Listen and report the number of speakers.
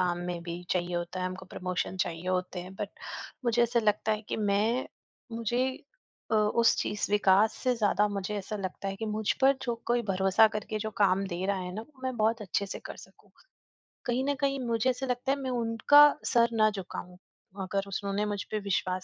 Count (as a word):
one